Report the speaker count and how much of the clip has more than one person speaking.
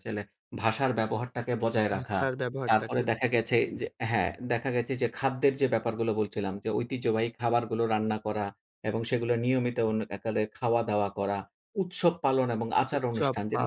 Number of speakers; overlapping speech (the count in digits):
2, about 11%